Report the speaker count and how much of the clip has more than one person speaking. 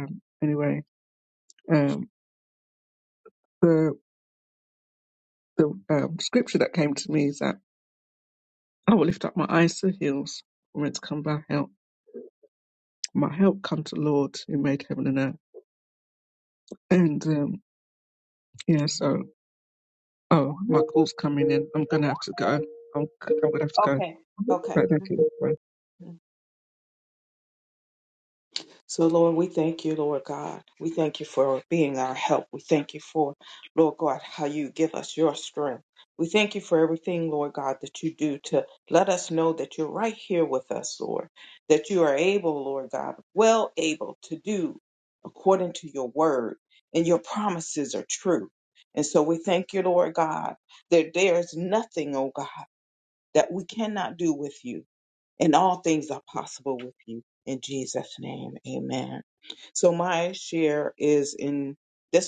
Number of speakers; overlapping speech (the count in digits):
2, about 1%